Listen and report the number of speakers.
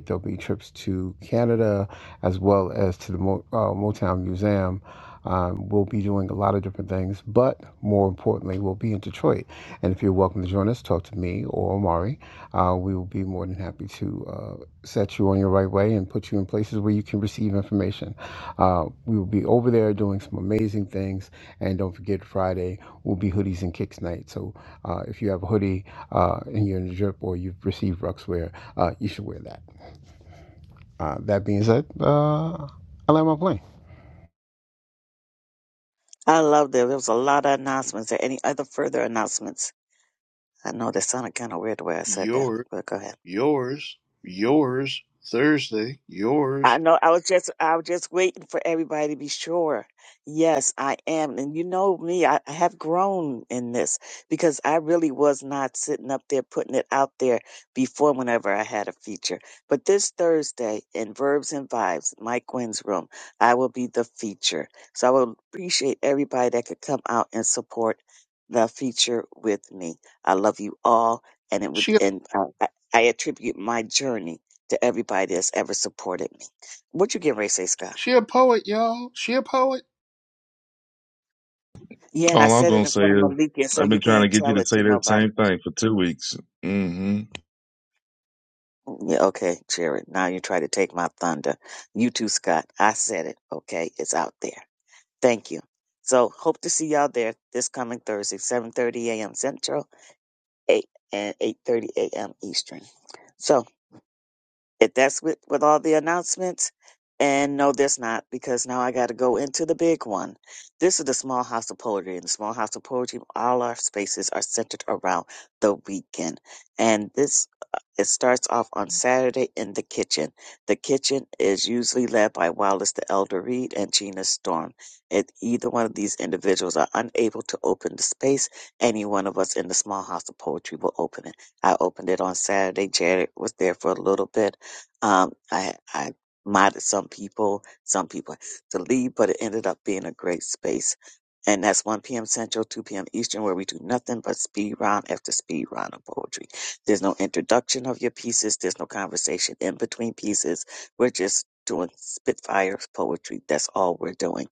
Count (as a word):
four